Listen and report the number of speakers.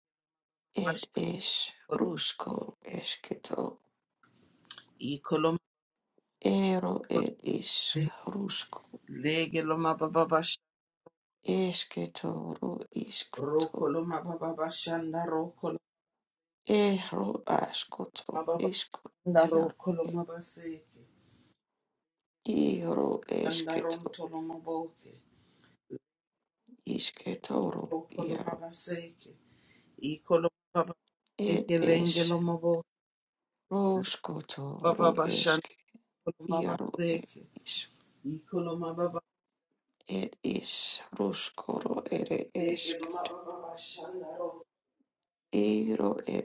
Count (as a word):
two